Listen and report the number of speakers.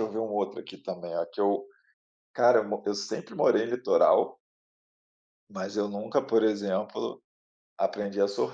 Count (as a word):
one